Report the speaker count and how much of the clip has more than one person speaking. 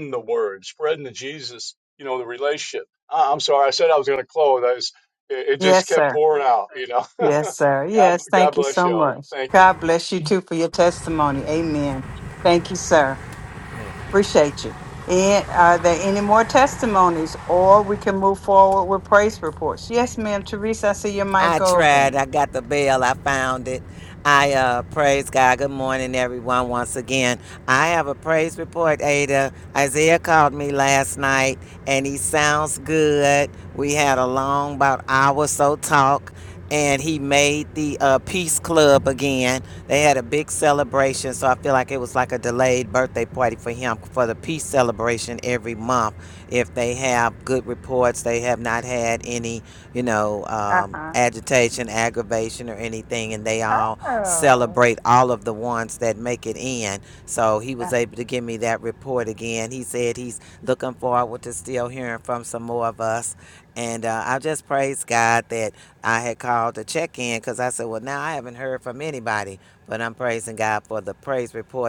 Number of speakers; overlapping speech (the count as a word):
three, about 5%